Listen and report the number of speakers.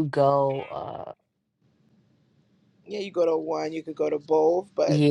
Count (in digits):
2